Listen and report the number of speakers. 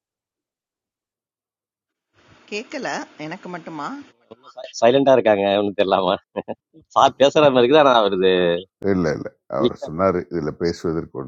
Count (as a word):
three